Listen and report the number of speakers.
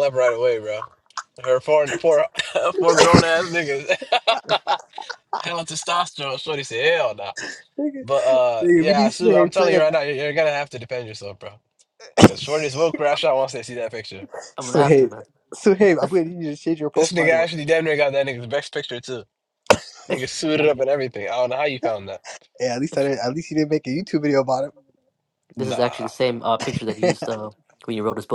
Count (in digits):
3